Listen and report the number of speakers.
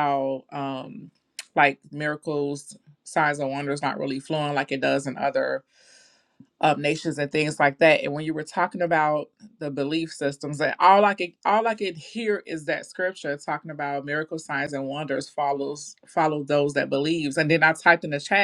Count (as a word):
one